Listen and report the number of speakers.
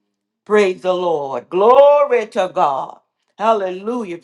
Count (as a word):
one